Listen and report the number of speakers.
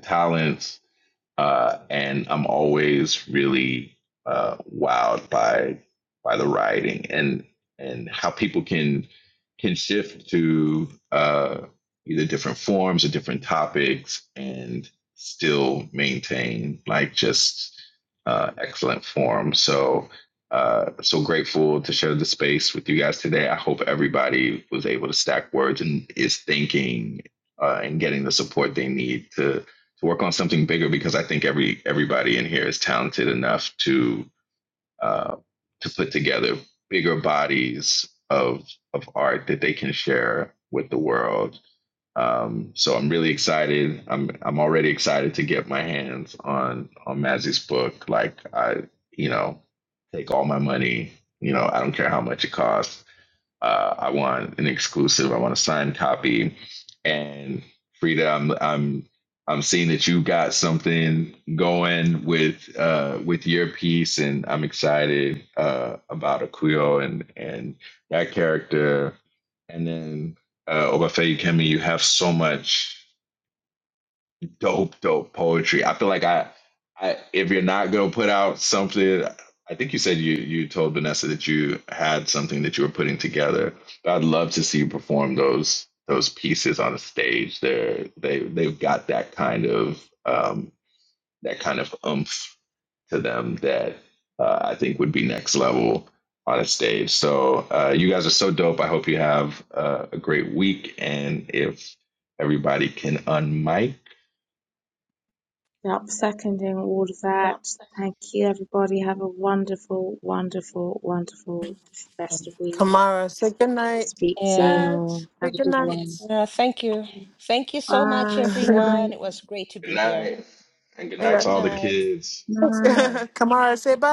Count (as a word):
four